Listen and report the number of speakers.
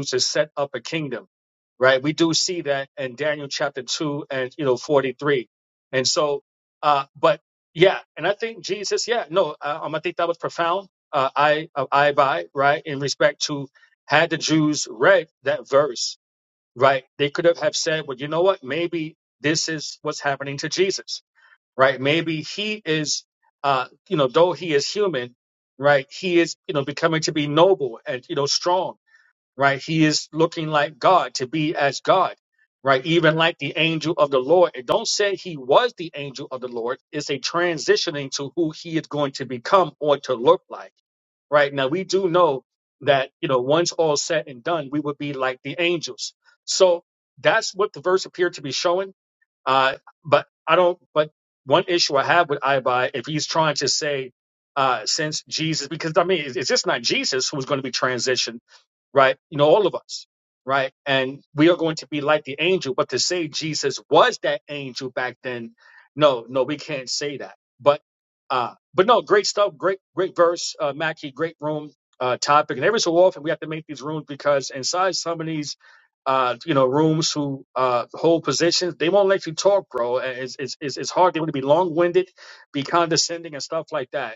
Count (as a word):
one